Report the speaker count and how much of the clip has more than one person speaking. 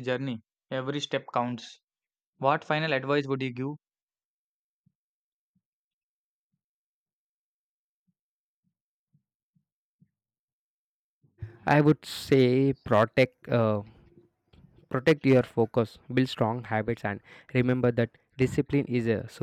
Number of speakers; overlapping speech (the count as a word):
two, no overlap